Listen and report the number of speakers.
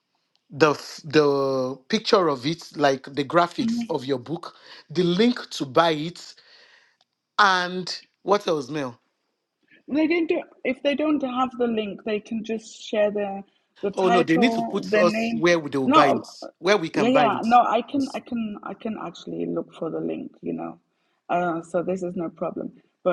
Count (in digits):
2